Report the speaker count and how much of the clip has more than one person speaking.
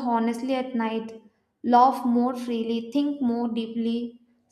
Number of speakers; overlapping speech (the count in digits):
1, no overlap